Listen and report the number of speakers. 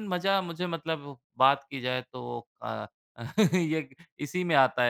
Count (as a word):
one